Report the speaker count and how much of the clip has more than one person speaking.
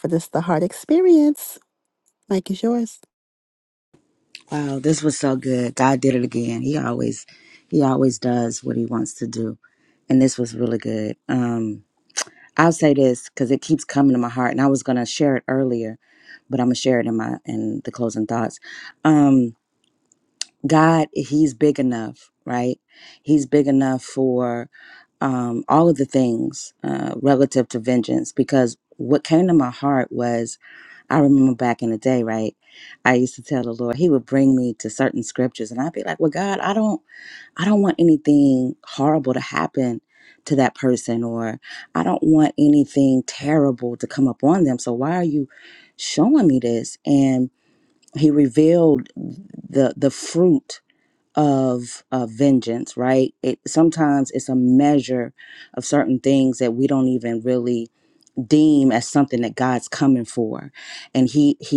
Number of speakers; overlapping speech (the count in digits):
2, no overlap